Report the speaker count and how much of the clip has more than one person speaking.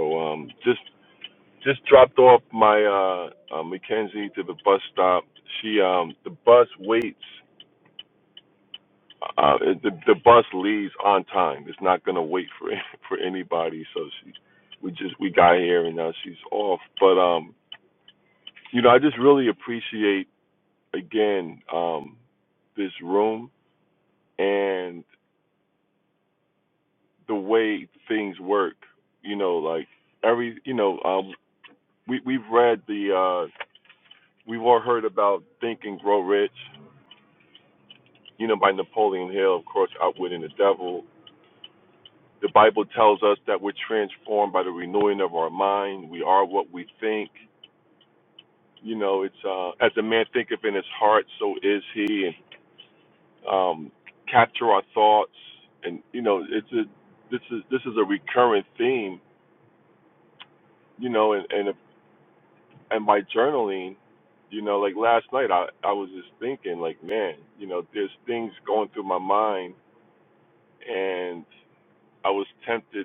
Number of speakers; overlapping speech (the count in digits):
1, no overlap